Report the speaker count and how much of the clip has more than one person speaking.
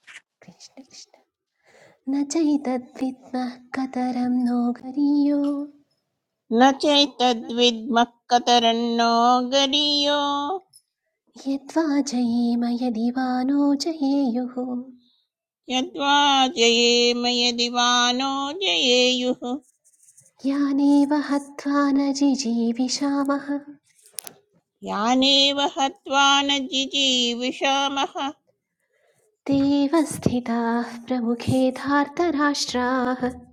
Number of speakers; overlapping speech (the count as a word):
two, no overlap